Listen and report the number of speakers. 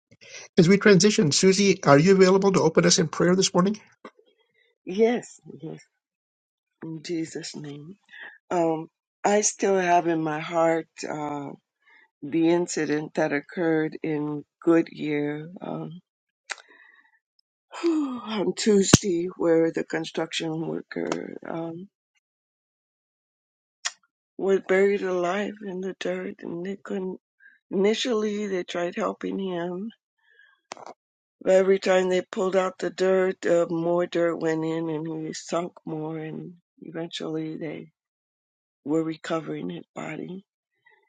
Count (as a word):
two